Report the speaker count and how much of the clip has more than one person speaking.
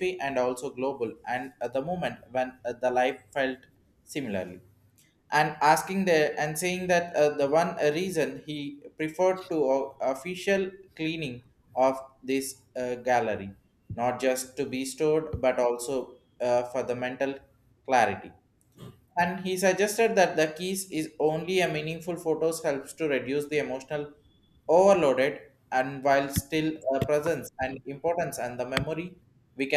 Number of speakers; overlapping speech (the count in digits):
1, no overlap